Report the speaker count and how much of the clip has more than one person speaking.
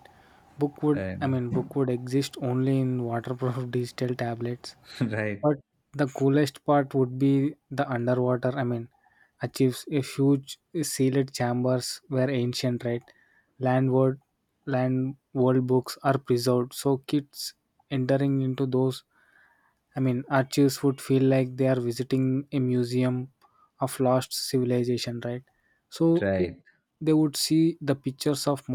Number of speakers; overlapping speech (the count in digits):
2, about 4%